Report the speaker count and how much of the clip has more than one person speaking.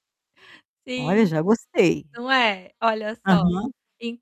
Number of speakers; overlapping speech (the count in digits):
2, about 12%